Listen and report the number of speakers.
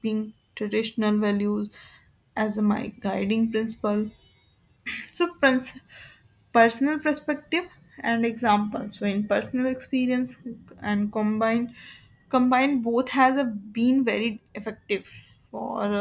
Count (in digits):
1